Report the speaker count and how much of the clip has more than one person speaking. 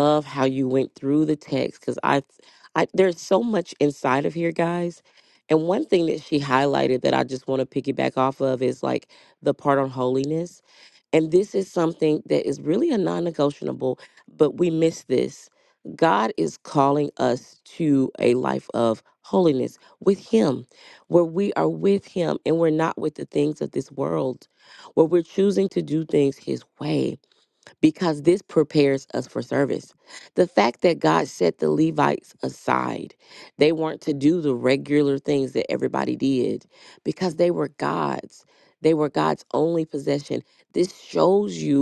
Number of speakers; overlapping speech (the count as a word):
one, no overlap